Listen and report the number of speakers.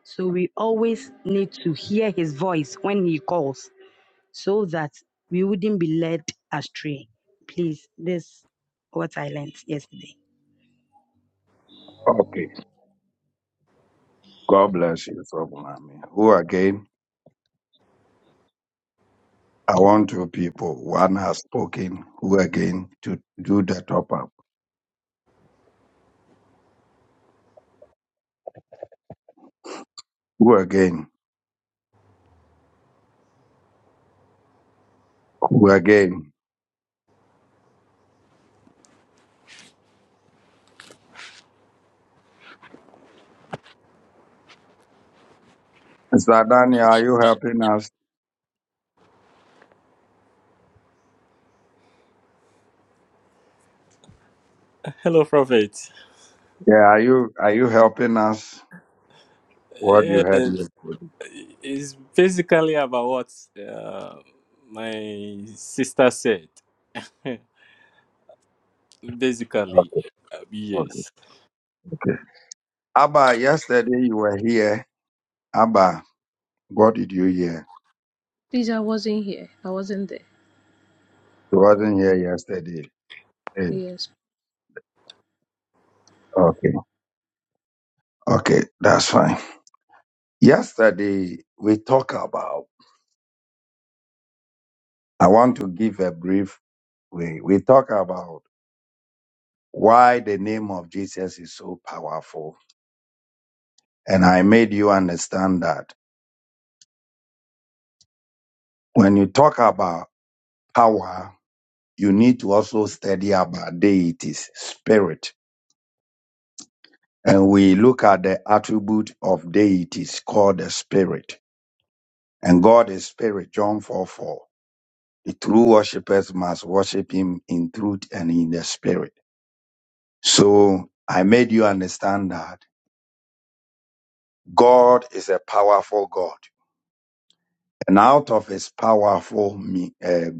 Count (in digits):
4